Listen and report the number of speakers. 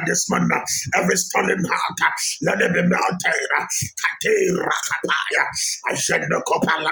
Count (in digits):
1